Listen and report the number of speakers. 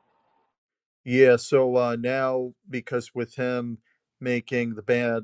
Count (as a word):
one